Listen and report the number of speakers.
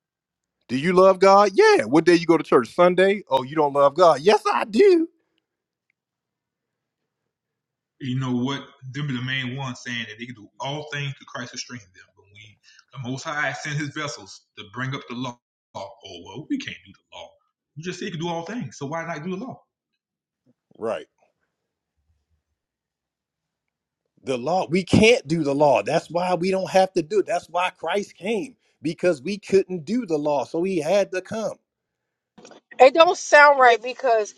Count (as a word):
three